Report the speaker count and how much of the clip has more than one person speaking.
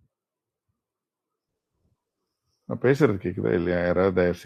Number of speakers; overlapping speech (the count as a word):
one, no overlap